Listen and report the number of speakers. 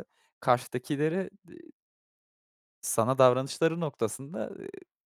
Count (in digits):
1